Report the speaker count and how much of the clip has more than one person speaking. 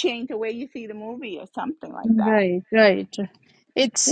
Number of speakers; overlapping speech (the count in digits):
2, about 10%